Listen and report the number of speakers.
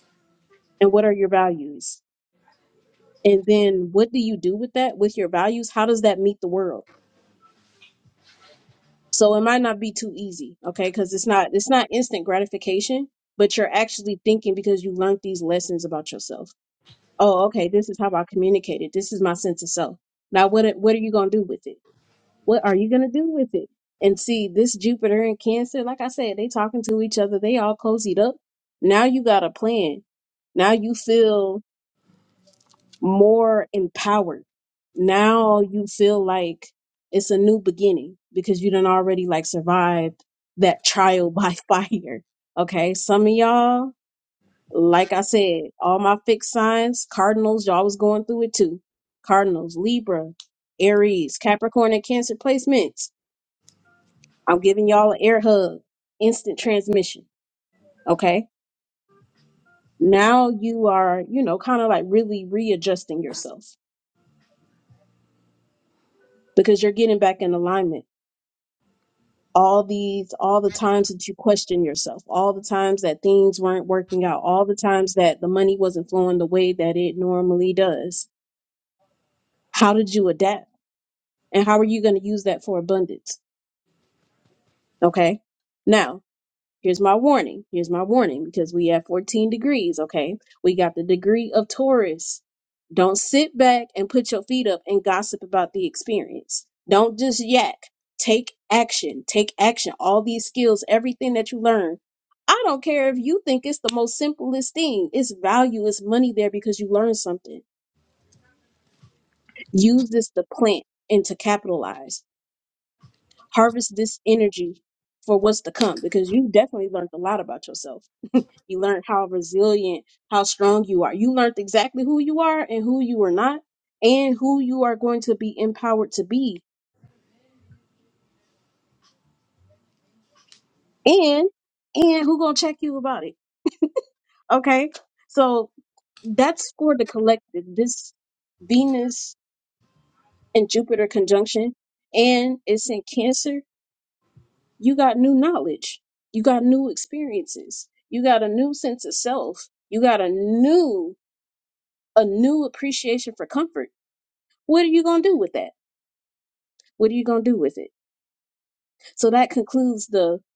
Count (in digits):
1